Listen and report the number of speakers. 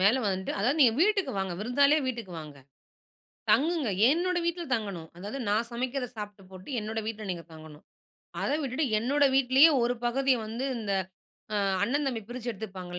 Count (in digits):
1